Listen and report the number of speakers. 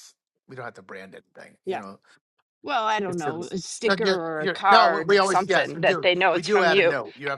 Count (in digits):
2